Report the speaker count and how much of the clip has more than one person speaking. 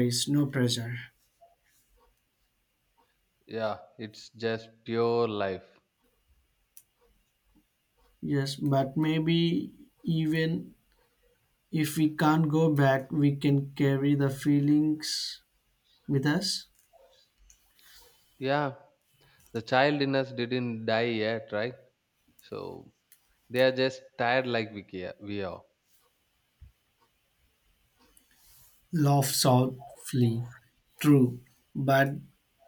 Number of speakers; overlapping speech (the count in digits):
2, no overlap